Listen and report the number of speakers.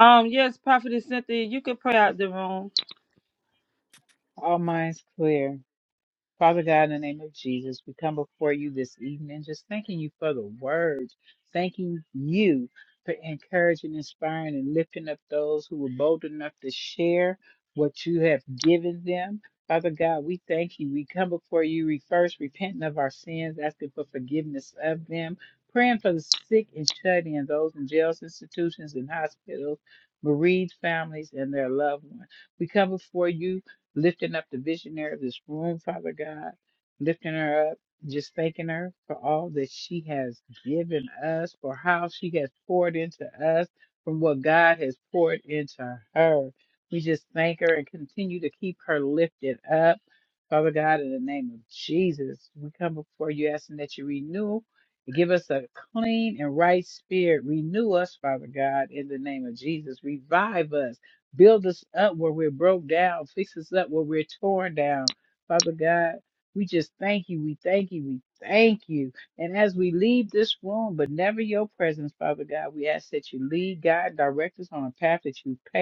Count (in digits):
2